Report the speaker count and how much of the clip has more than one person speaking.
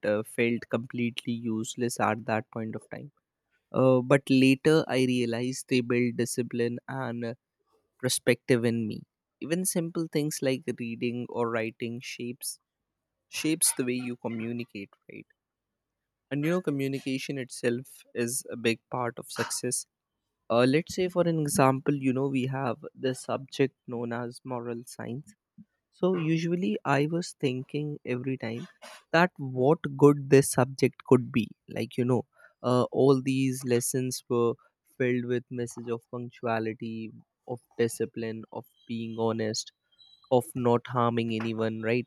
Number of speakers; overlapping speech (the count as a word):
one, no overlap